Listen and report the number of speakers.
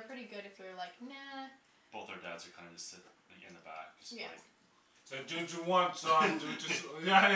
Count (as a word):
three